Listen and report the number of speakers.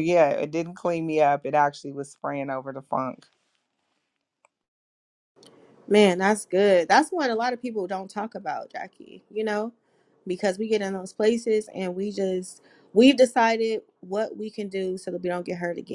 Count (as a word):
two